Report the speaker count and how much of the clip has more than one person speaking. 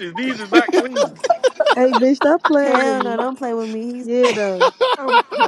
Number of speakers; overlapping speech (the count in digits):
3, about 11%